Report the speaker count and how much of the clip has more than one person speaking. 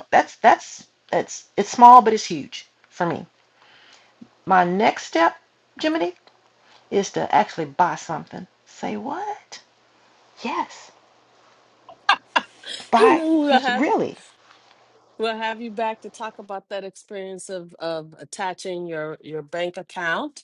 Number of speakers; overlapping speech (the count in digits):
2, about 3%